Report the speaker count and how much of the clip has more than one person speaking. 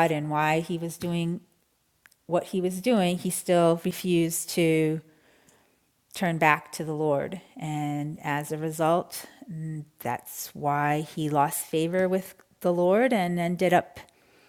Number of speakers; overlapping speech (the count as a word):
one, no overlap